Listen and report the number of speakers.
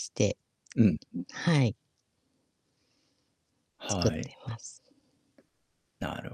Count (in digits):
2